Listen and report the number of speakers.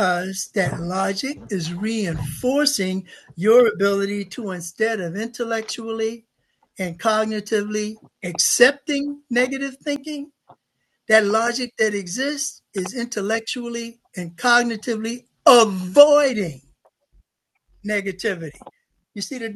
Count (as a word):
one